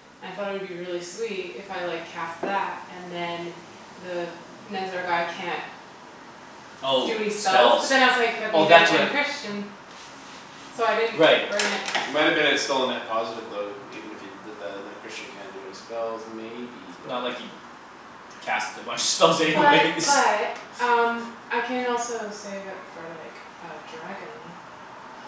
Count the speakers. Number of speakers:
3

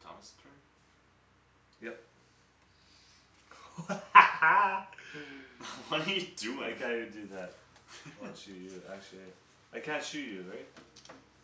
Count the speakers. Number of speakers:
2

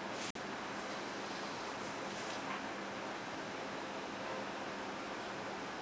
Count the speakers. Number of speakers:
0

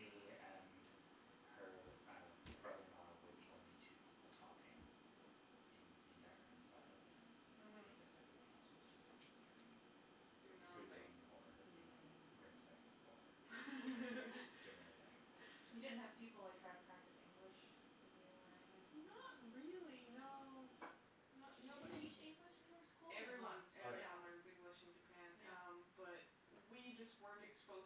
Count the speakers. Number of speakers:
3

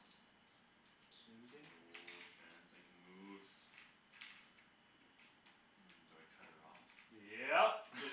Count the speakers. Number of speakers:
2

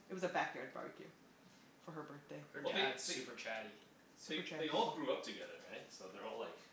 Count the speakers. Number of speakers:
3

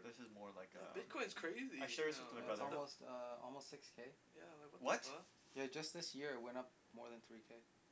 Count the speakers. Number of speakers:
3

